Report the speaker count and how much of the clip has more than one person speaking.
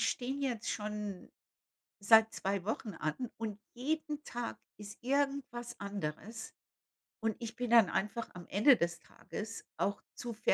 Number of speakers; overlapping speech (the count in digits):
1, no overlap